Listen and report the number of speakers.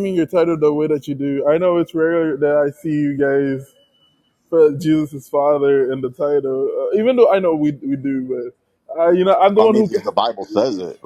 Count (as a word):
two